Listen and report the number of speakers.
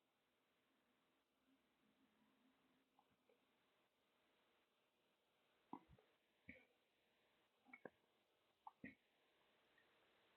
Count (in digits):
0